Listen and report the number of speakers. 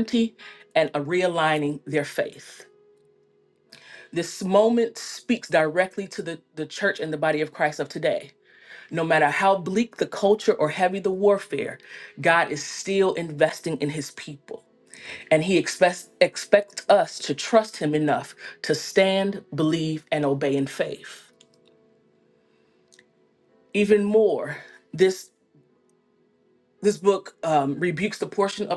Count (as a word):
one